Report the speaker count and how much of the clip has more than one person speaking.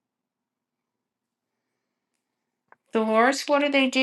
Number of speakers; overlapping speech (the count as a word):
one, no overlap